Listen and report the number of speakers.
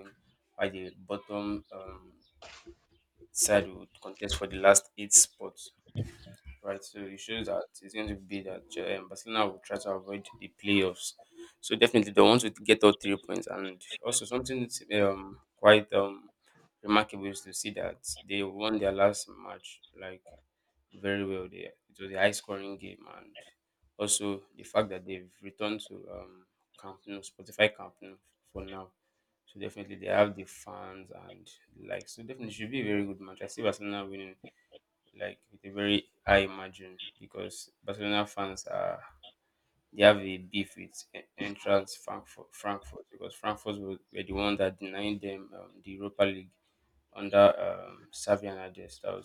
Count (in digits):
1